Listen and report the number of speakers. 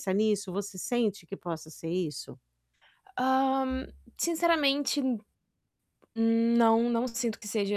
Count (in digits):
2